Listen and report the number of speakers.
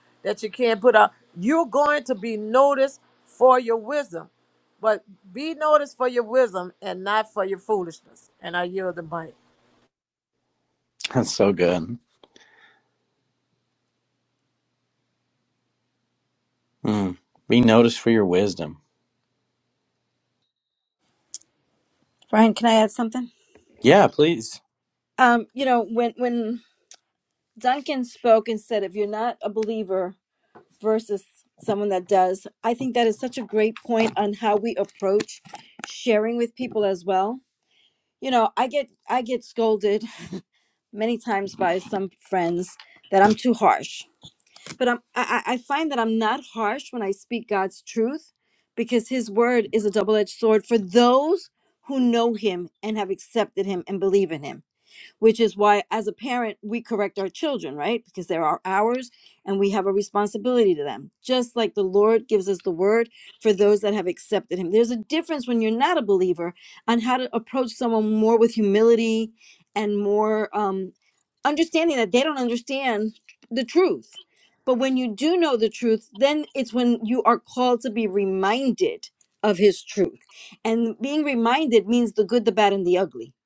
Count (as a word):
three